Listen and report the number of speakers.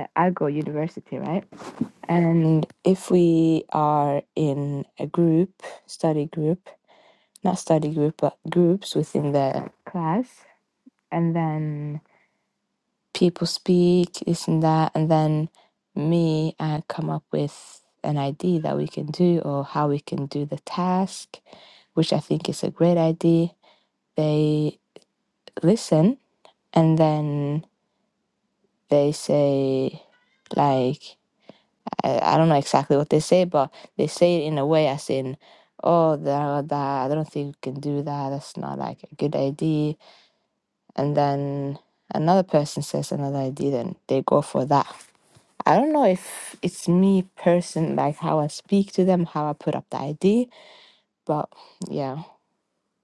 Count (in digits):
1